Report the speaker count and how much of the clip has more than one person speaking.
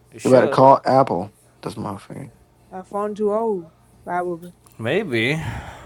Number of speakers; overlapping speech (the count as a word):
three, about 6%